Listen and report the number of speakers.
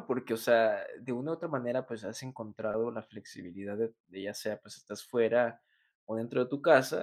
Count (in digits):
1